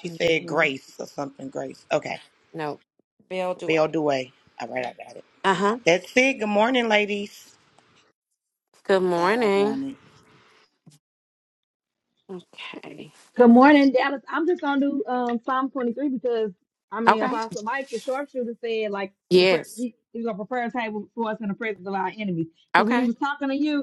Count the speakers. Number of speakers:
3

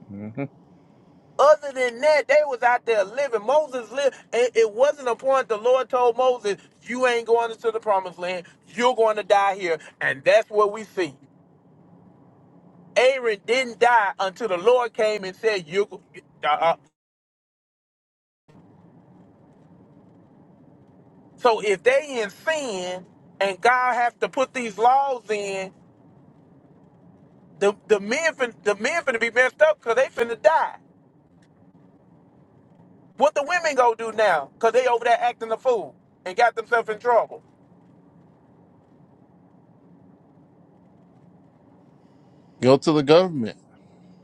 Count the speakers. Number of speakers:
2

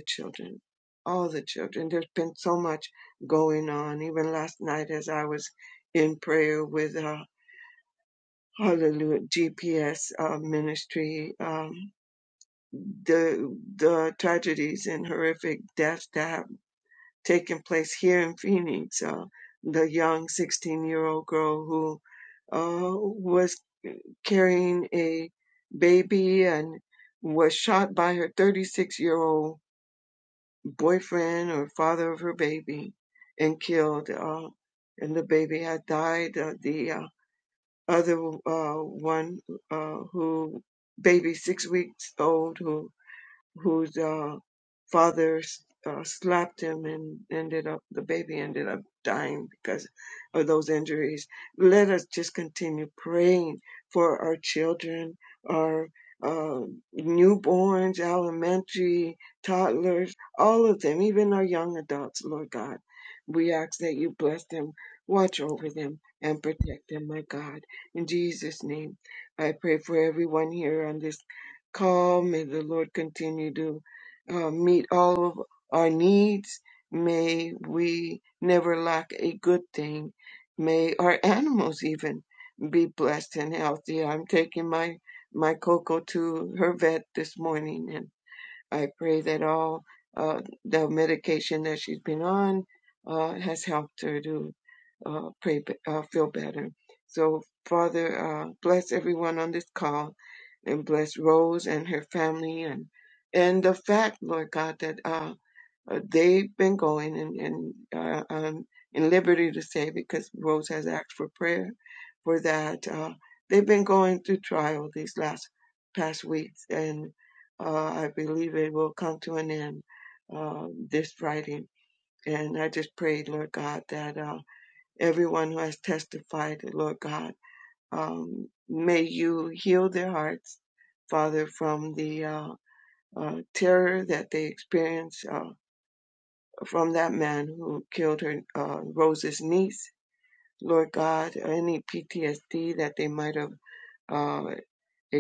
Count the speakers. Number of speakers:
1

